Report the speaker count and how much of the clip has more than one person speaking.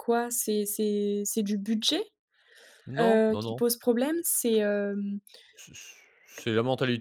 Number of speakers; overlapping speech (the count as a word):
two, about 9%